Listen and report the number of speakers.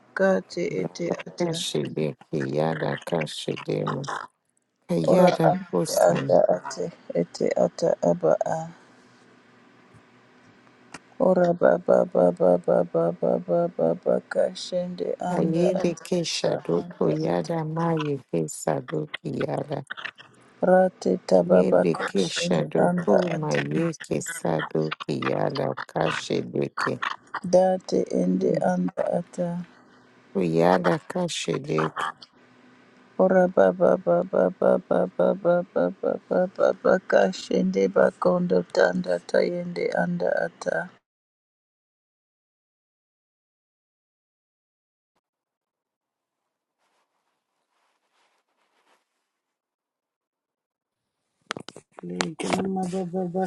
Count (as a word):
three